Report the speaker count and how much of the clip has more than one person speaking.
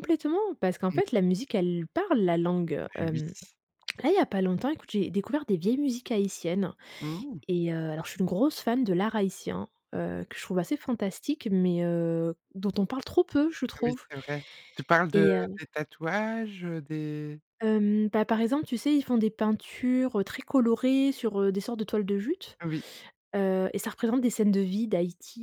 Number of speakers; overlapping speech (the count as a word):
two, about 5%